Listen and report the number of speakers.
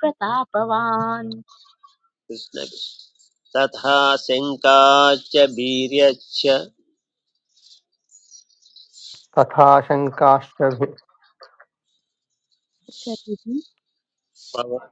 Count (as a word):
three